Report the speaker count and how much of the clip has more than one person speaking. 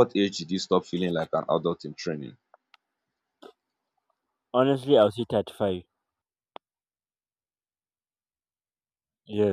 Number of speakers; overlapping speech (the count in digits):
2, no overlap